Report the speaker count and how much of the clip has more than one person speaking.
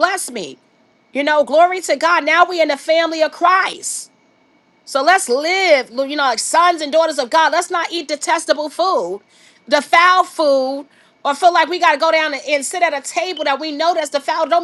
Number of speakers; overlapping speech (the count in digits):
1, no overlap